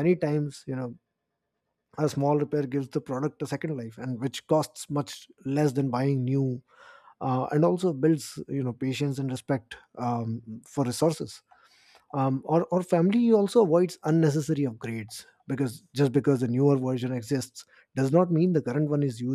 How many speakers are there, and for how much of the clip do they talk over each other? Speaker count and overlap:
one, no overlap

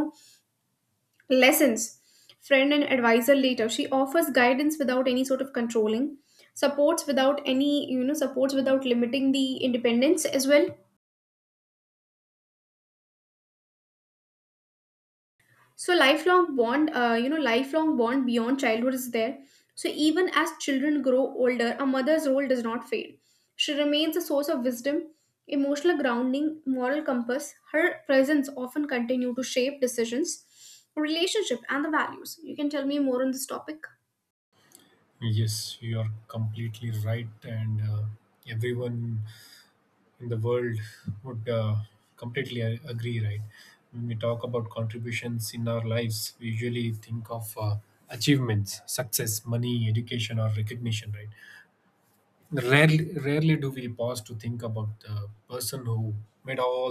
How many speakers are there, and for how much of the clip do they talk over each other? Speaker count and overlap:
two, no overlap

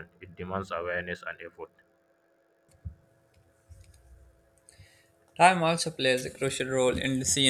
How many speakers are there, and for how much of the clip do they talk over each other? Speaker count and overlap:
two, no overlap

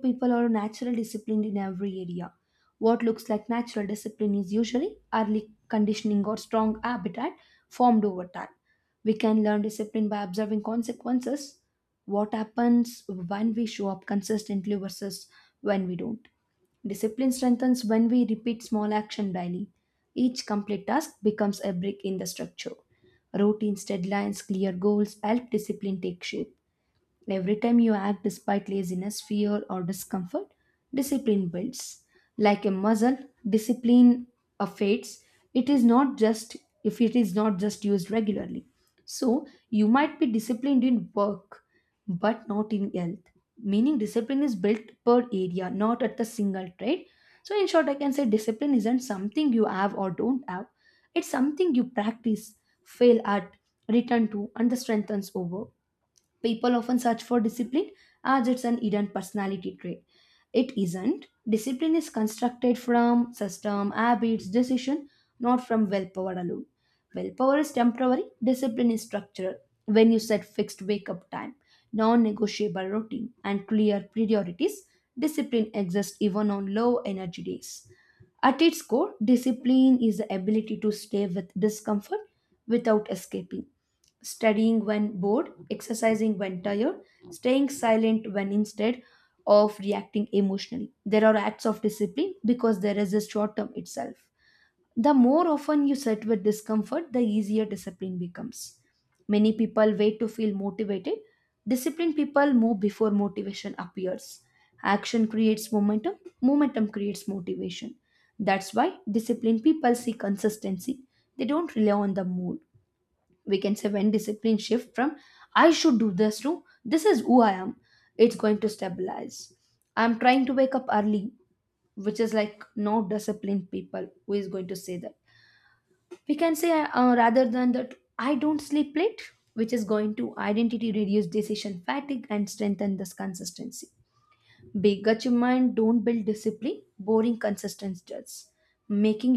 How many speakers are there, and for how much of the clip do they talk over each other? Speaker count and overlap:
one, no overlap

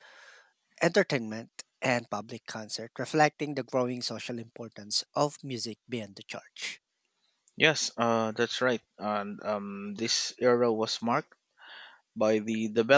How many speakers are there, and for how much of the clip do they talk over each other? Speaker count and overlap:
two, no overlap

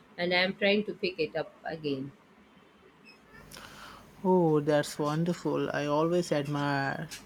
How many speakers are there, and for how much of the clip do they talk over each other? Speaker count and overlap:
two, no overlap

